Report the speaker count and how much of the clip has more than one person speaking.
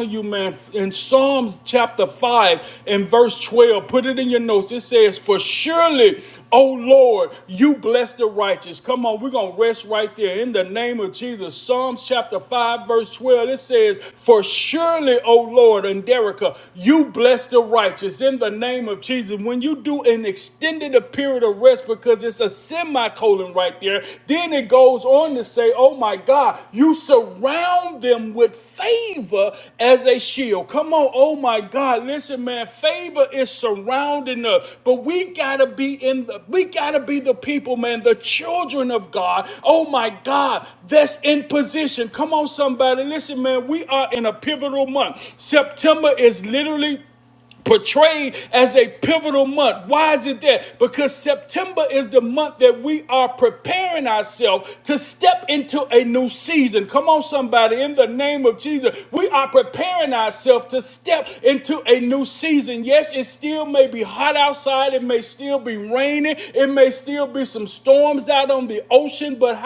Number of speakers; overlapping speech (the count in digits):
1, no overlap